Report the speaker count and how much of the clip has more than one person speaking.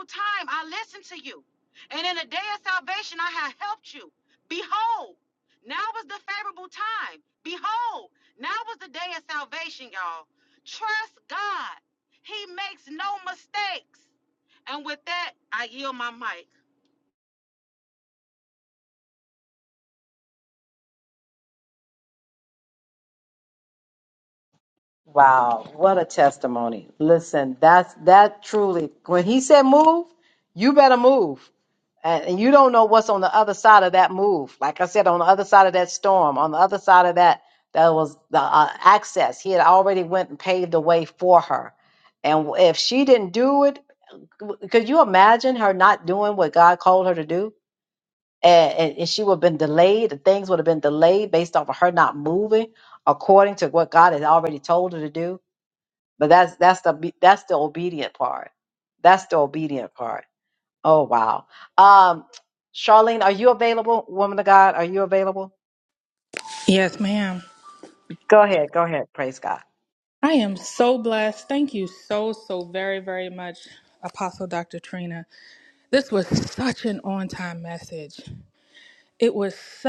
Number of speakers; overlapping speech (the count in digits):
3, no overlap